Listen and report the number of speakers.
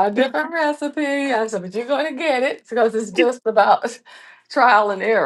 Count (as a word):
one